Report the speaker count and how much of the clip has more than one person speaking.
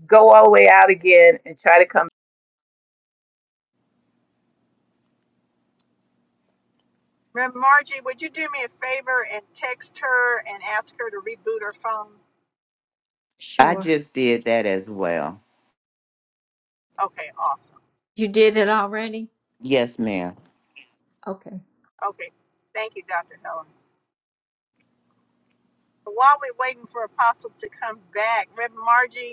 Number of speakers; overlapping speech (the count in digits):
4, about 1%